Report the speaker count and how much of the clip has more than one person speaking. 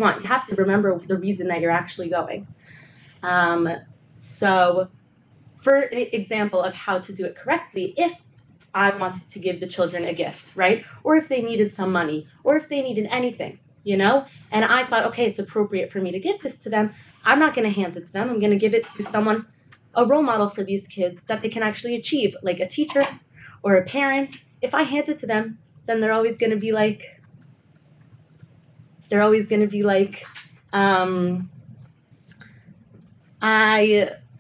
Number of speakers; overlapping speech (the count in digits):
1, no overlap